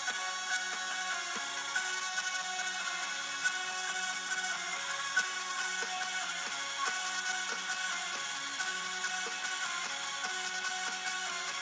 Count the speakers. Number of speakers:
zero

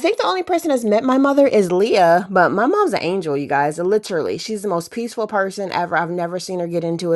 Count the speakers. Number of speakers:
one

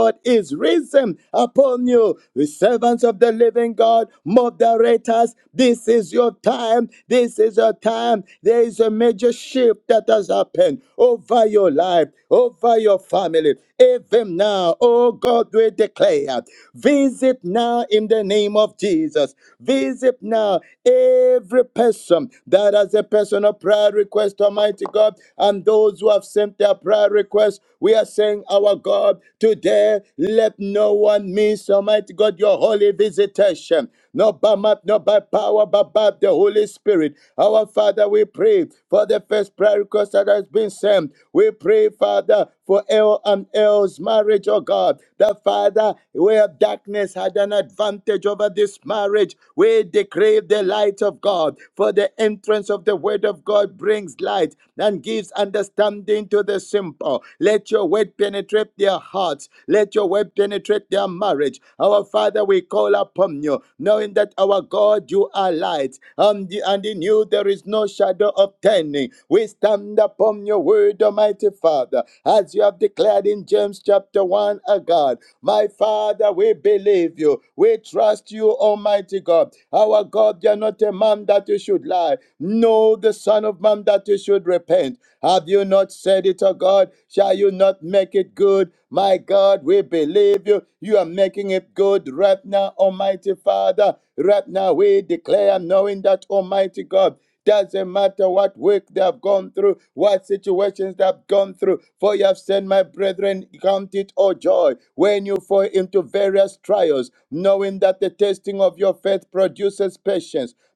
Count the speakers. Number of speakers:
one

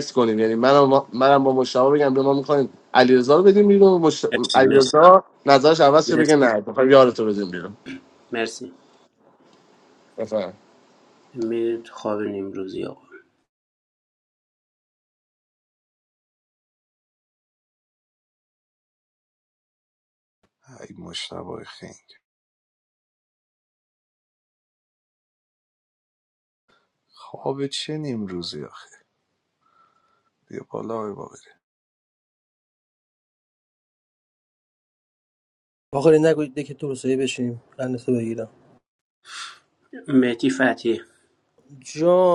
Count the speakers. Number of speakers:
four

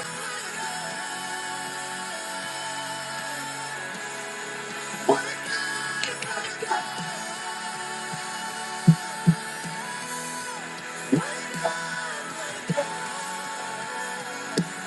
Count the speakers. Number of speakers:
zero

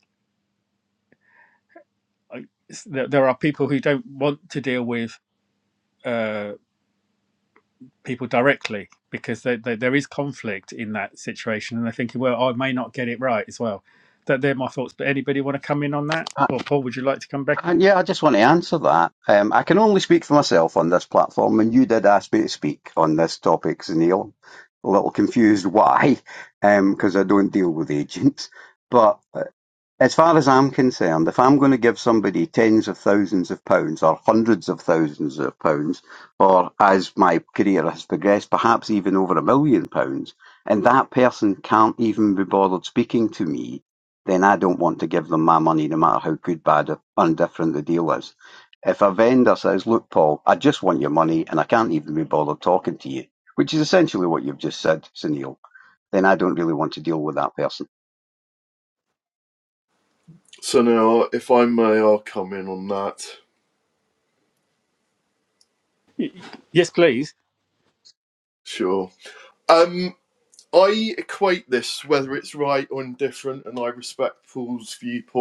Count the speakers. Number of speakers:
three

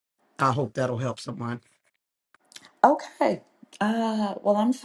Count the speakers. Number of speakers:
two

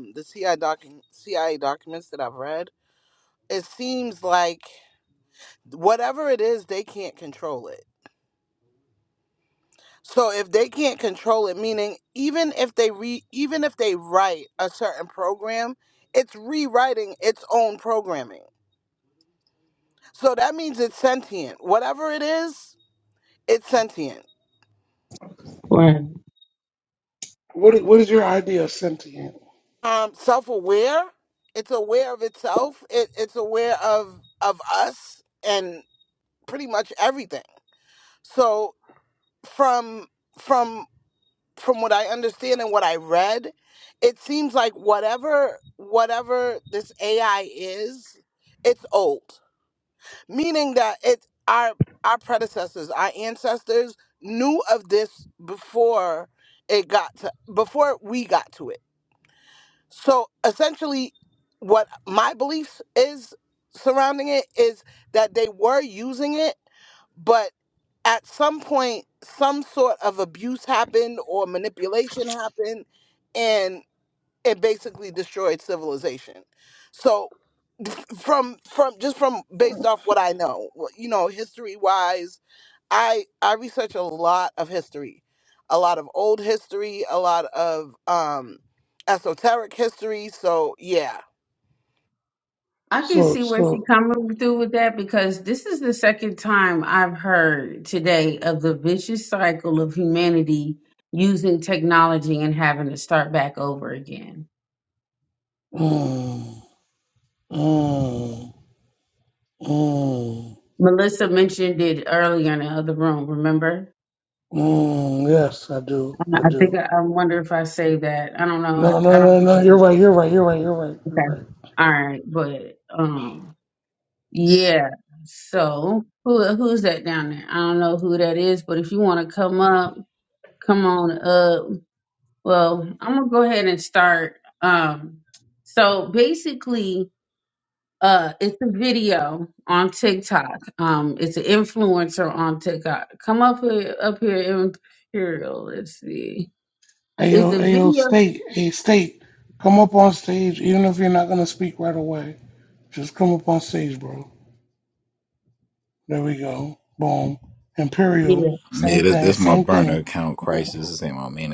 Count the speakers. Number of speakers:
four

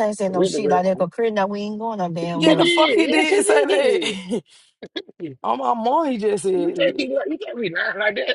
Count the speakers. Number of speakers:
three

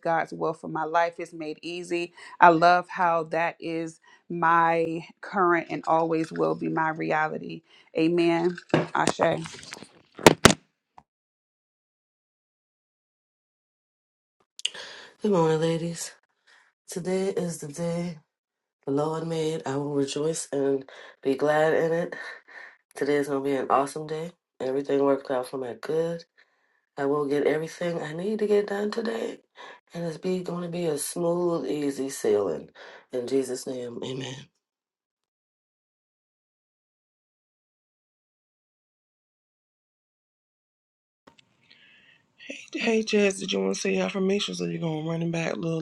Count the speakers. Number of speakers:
three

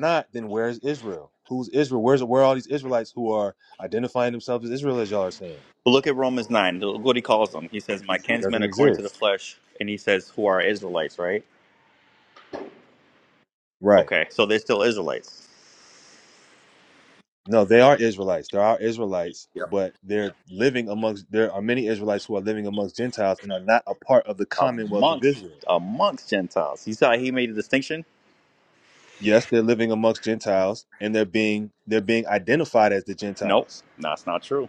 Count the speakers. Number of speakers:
two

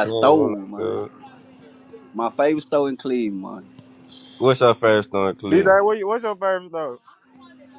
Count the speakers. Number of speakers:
three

